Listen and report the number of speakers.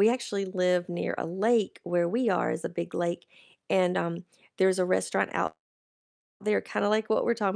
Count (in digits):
1